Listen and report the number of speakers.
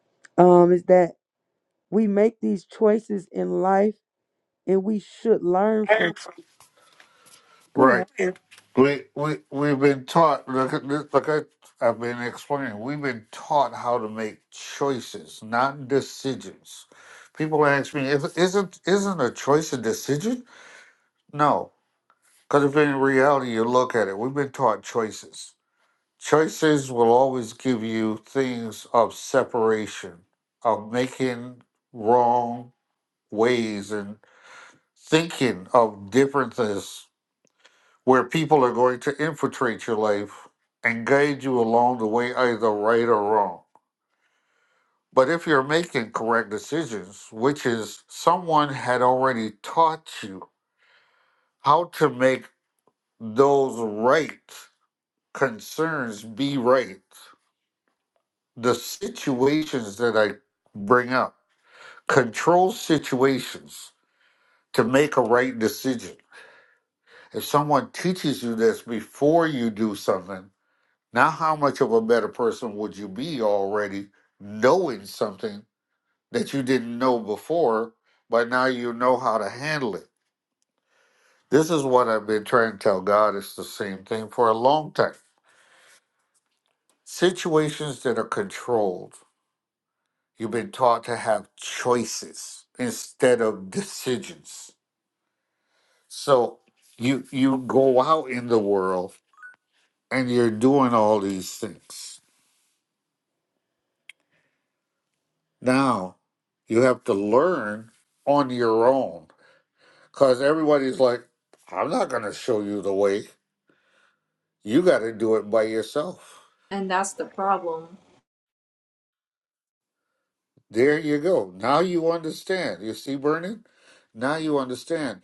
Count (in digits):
3